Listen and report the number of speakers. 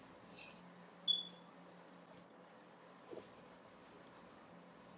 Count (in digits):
0